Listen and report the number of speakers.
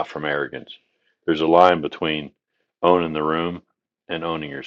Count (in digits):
1